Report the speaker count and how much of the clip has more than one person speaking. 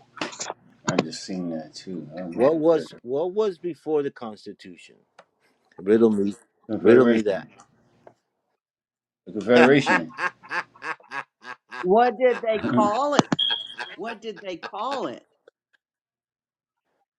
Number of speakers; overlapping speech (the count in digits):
3, about 8%